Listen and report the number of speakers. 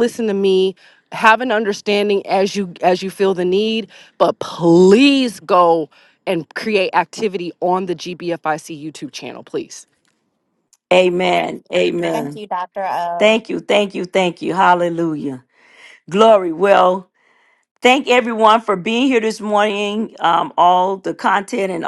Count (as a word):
three